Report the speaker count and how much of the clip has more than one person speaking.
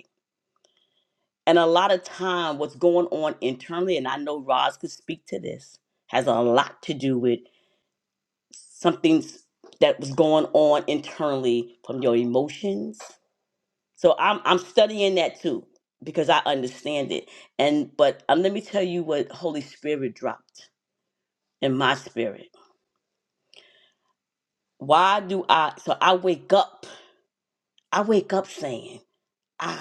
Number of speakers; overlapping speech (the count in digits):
1, no overlap